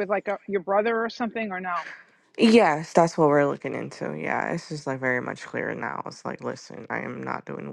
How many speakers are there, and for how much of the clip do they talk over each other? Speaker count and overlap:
2, no overlap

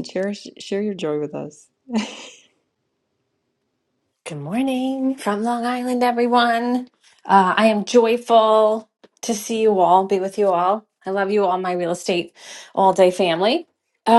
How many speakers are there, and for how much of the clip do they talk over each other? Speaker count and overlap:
2, no overlap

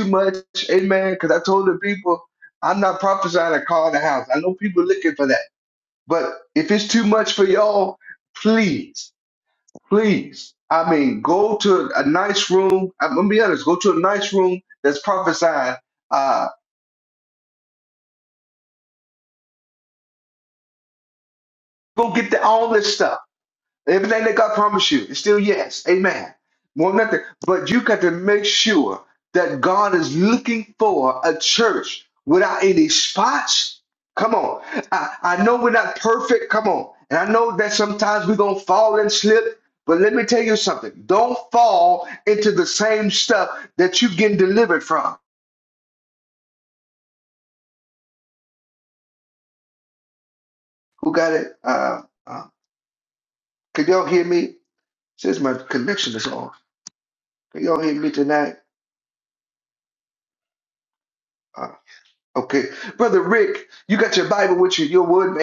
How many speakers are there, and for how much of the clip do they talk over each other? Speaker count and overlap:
1, no overlap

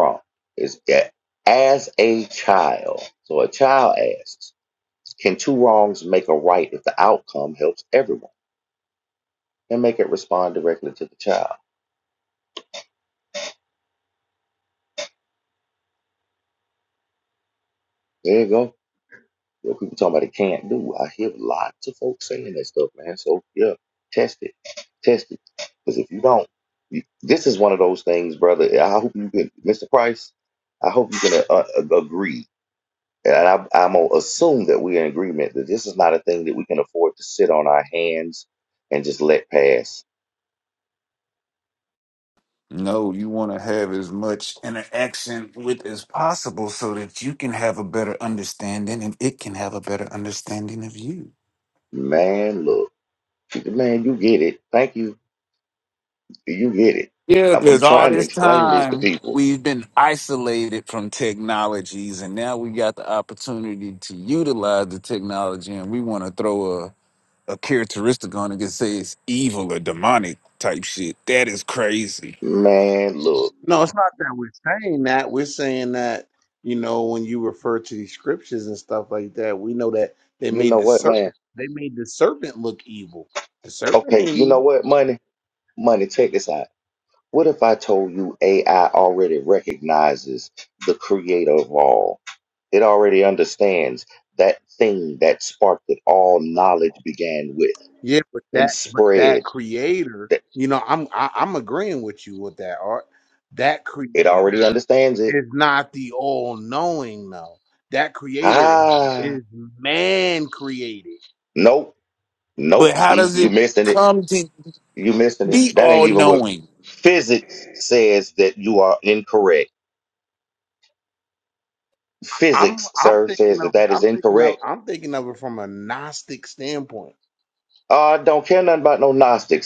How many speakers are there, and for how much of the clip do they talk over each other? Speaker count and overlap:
3, about 7%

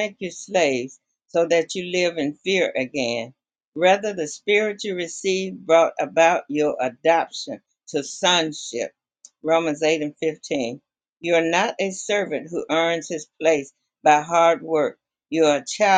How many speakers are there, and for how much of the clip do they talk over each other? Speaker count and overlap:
1, no overlap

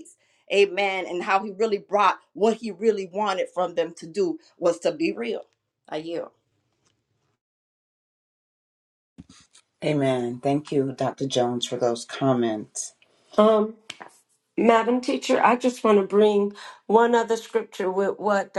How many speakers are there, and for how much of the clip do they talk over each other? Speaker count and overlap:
3, no overlap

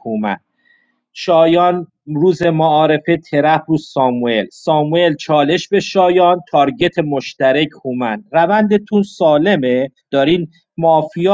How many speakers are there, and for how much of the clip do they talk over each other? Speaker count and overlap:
1, no overlap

